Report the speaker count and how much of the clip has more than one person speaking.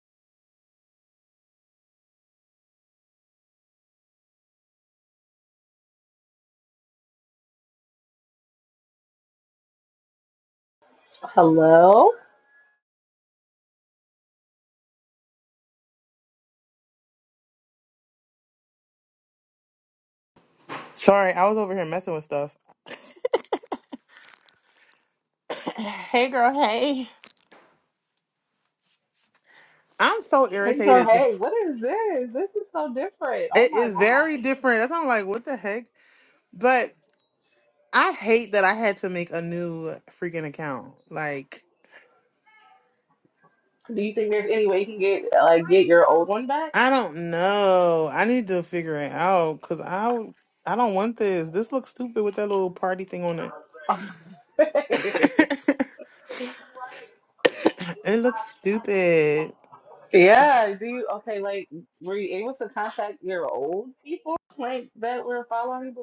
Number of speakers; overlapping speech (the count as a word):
two, about 2%